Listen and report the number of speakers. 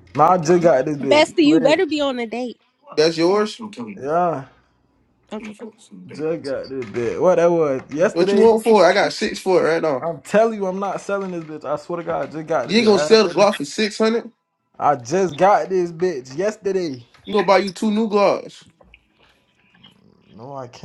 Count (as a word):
three